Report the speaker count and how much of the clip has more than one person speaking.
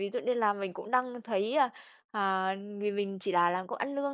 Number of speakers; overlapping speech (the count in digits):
1, no overlap